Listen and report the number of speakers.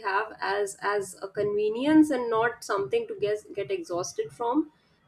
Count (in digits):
1